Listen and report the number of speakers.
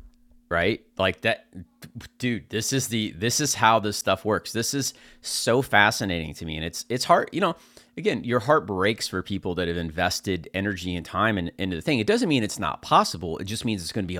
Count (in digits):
1